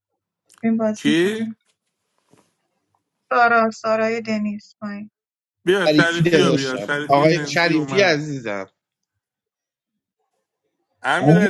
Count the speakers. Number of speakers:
three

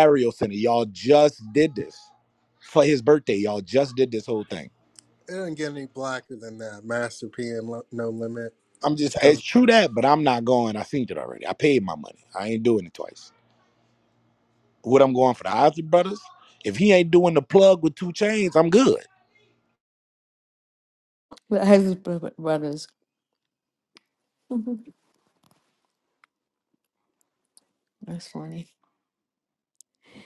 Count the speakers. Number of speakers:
three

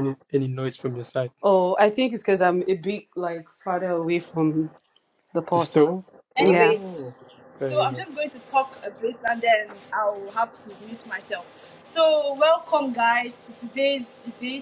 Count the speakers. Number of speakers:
three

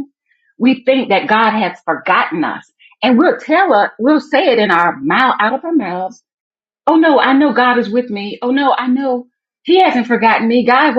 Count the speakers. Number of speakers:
one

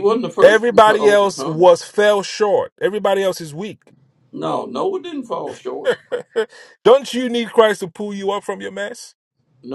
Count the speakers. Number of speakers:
two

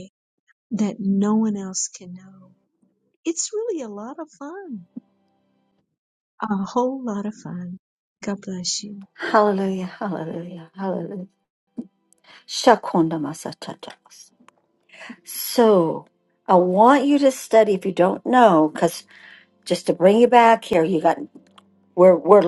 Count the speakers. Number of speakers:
two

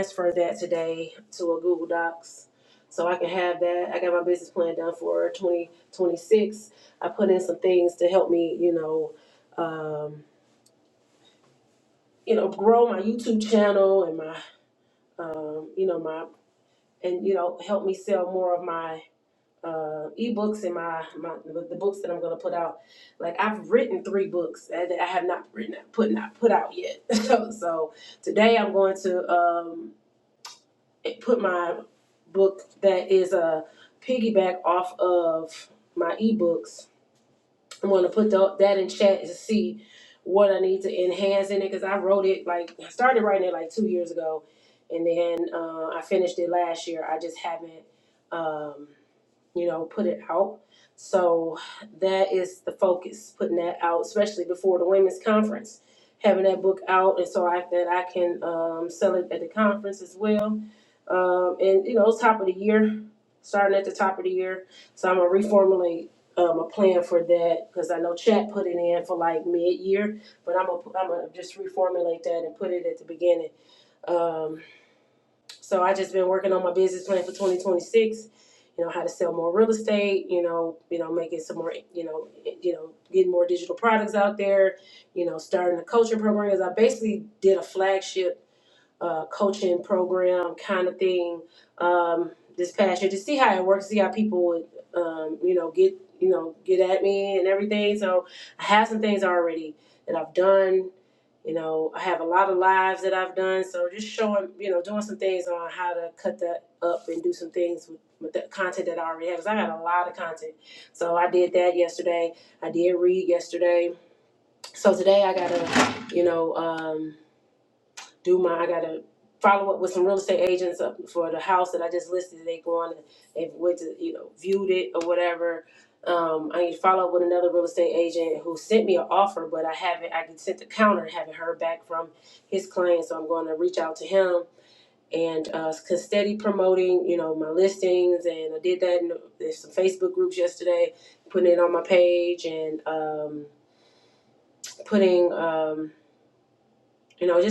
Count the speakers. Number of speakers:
one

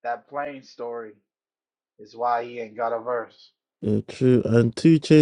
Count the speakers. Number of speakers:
two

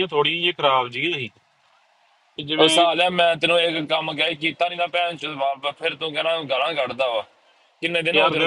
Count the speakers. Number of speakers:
two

